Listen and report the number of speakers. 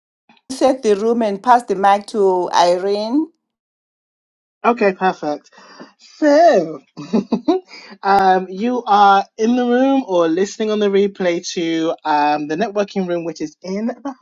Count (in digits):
2